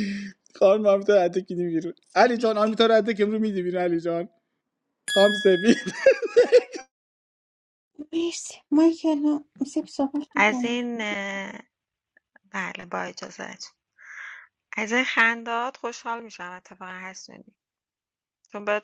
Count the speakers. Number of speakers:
3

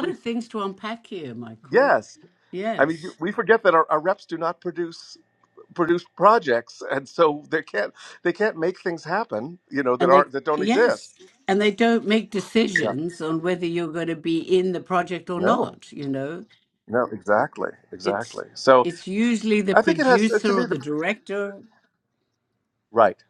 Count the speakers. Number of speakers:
2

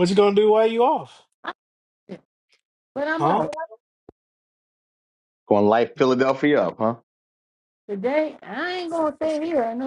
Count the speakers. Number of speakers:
3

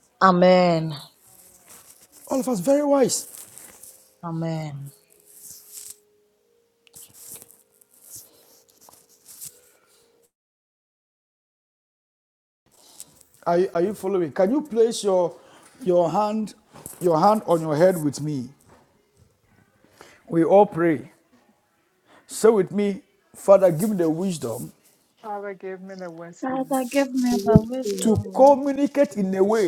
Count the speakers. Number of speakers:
4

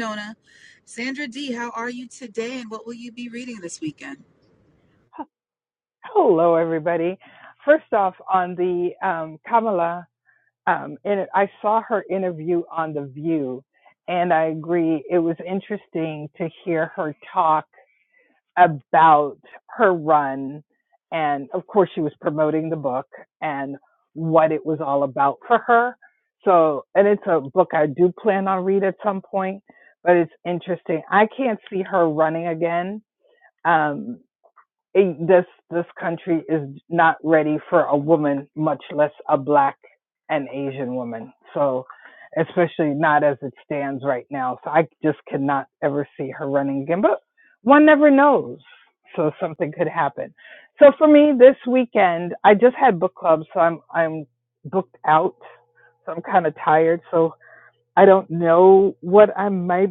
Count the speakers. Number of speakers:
2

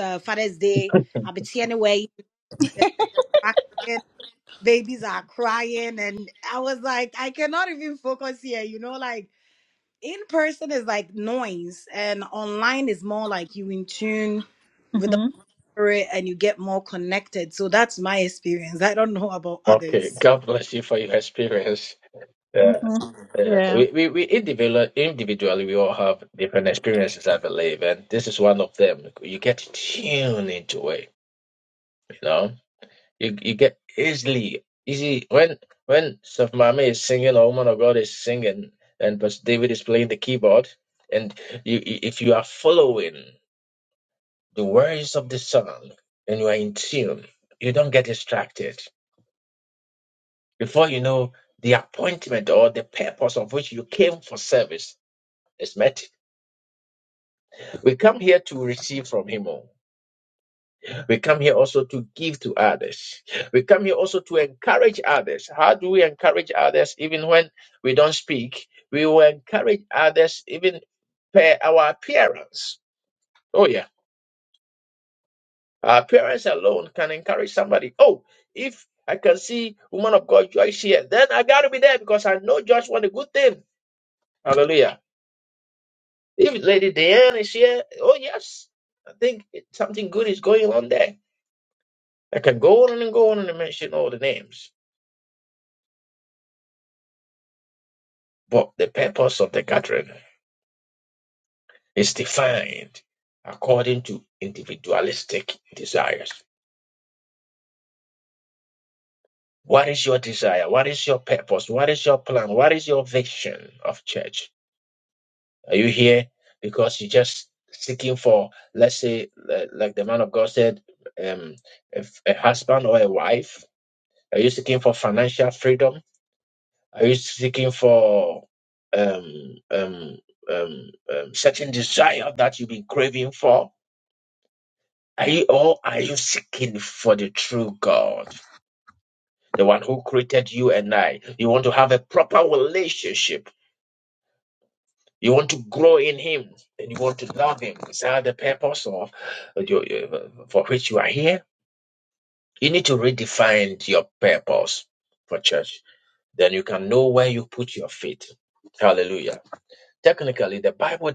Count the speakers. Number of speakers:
3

